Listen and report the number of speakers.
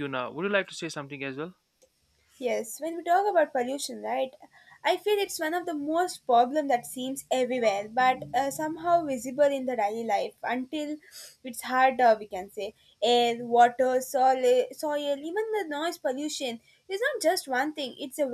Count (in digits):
2